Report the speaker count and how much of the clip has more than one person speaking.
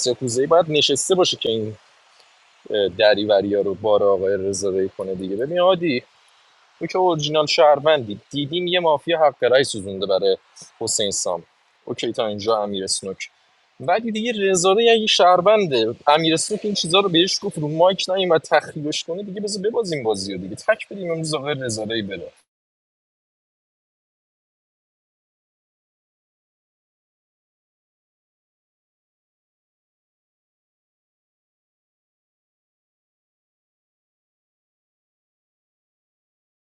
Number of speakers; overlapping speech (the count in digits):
1, no overlap